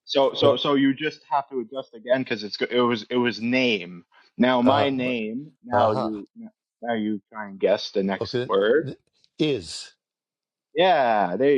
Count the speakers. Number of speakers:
2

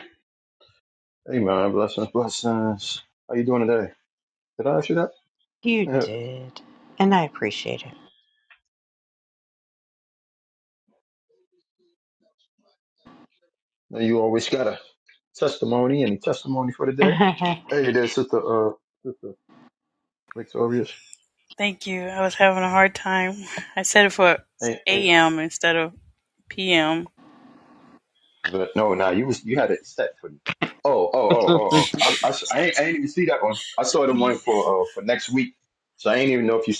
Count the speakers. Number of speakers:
3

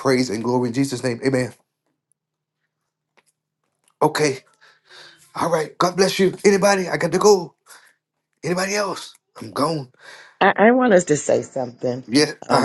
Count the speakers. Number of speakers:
2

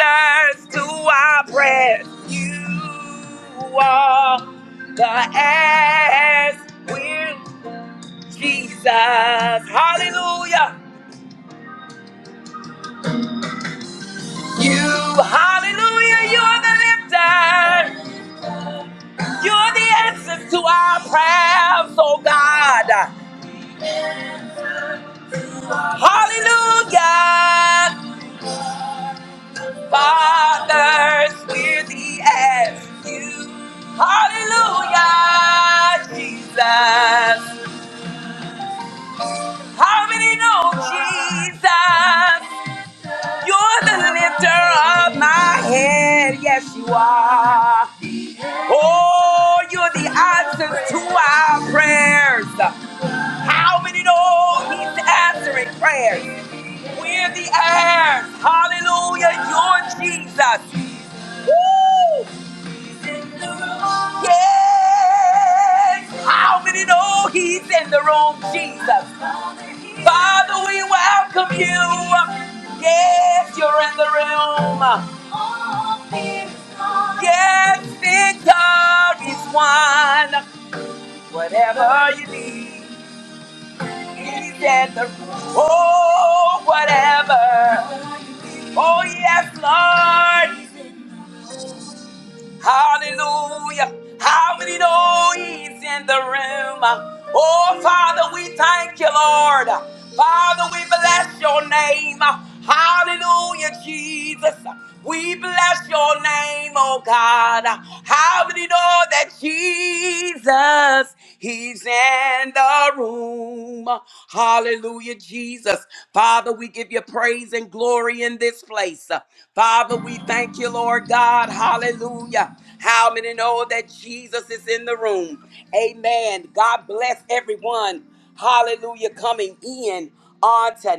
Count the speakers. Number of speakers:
1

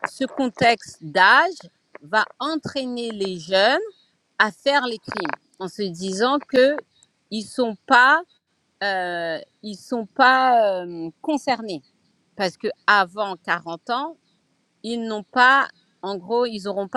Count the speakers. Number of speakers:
1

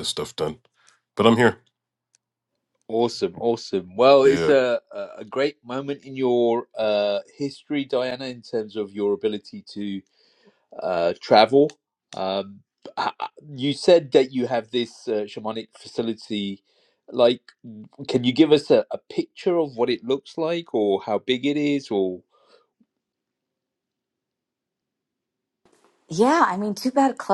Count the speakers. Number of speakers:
3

